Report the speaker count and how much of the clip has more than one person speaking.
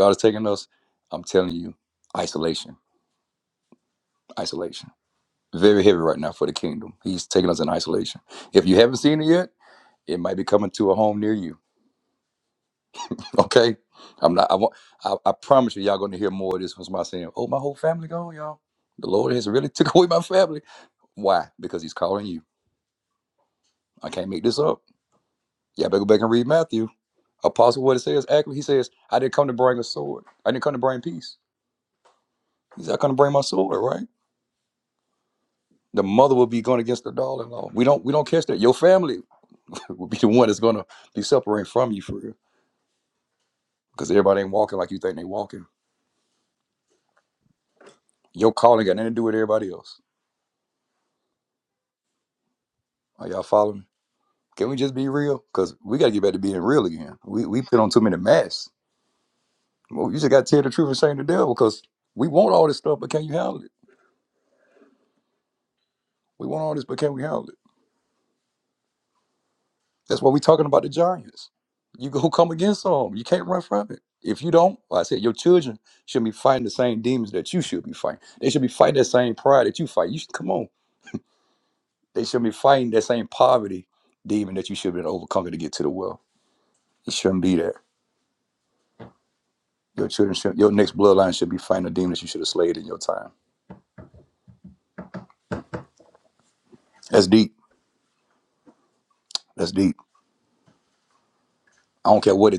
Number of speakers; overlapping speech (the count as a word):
one, no overlap